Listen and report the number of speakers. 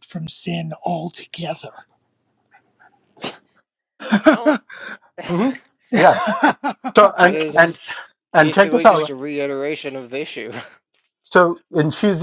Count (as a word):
three